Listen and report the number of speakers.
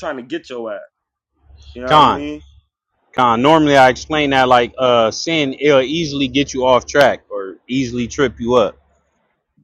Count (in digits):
2